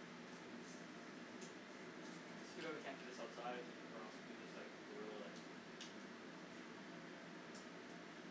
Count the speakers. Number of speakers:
1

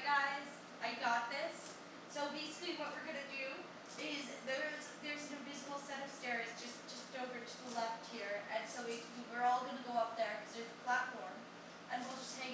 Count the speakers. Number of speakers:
1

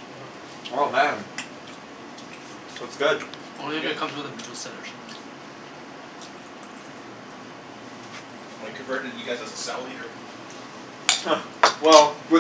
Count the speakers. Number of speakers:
3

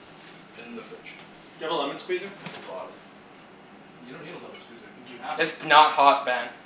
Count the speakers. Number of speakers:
3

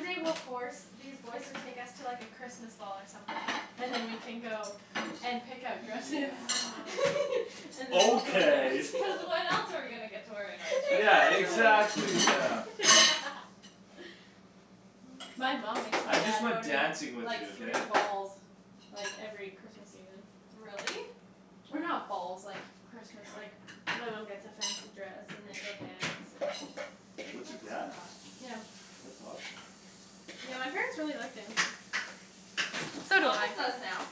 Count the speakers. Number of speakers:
3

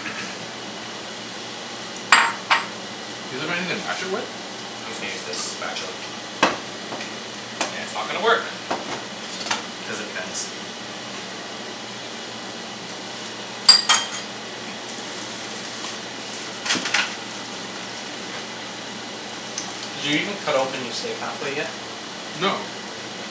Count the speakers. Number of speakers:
3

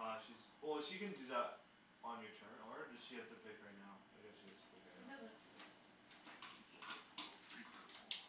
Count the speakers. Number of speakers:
3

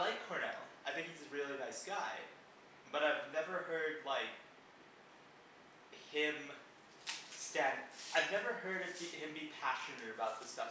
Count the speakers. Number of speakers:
1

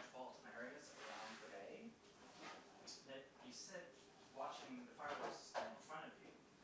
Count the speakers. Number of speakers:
1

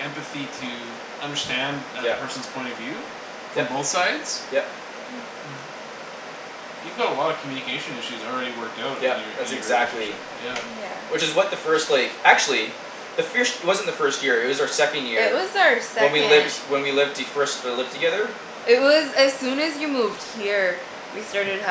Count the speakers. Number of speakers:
3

